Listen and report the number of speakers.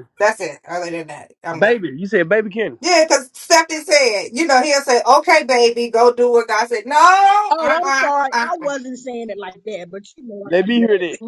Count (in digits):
3